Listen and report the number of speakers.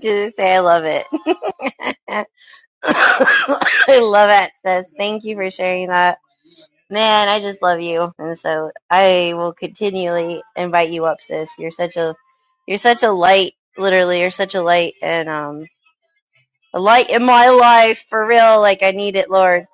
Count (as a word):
one